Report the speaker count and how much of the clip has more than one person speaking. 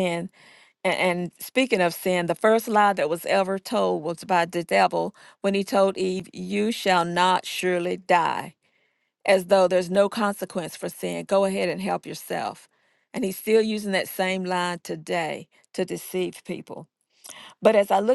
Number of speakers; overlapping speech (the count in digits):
1, no overlap